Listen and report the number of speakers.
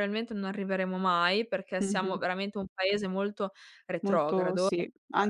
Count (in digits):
2